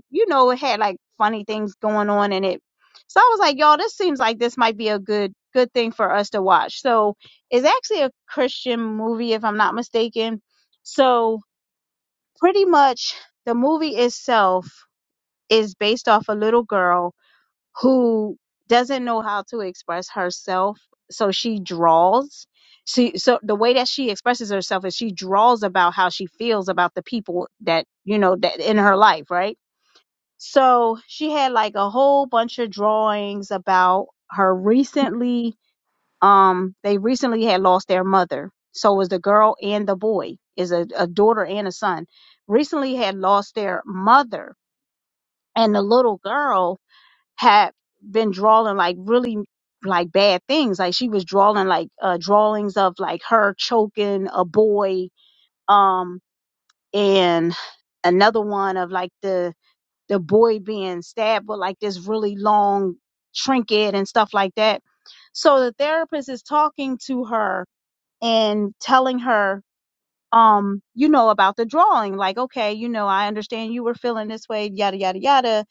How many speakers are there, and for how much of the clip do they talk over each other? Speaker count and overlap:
one, no overlap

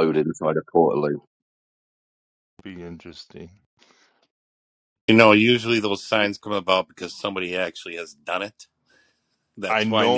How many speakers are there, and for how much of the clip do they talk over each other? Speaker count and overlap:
three, about 5%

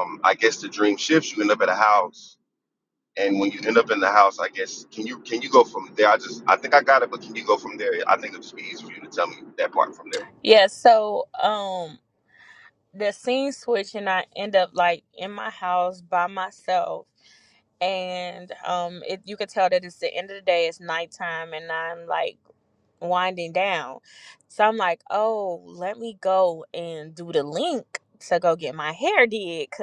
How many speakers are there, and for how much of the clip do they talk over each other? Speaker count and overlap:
two, no overlap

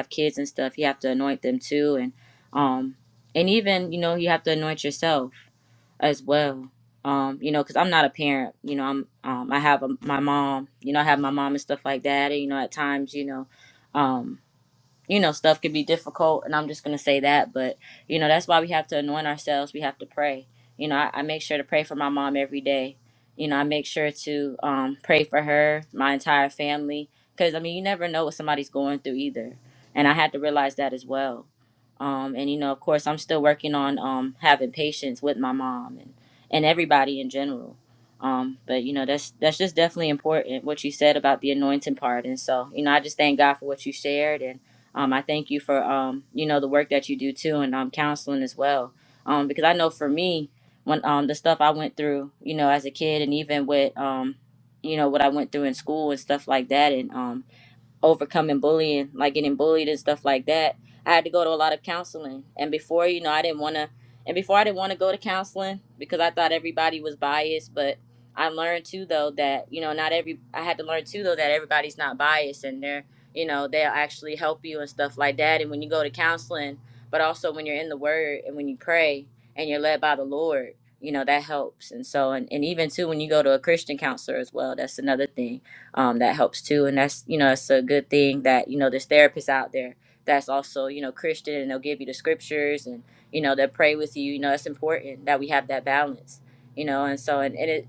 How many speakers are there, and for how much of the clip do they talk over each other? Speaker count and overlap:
one, no overlap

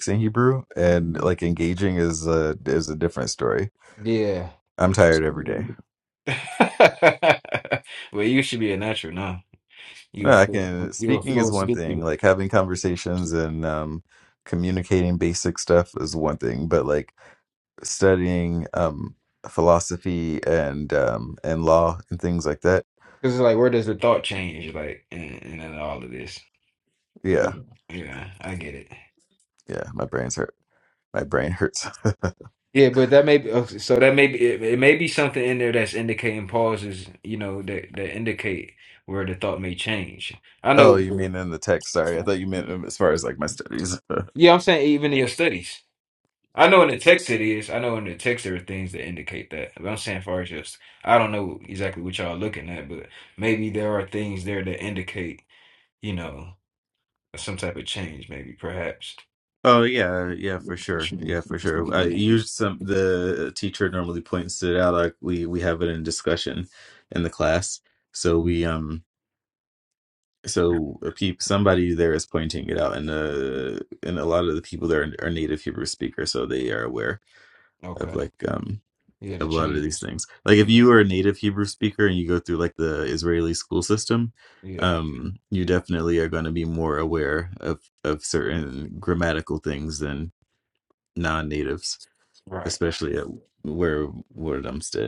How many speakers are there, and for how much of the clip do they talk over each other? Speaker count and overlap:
two, about 3%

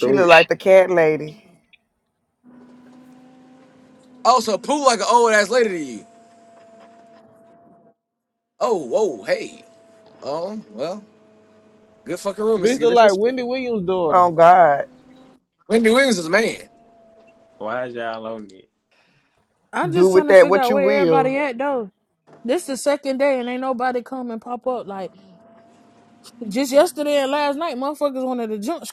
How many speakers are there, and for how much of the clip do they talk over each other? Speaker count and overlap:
five, about 8%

